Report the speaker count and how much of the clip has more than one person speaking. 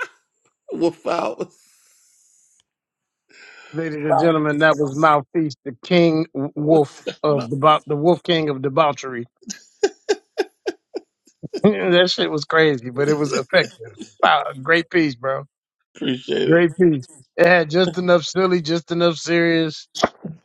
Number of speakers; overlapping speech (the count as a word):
two, about 2%